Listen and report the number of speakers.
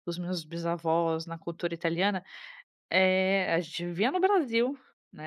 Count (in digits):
1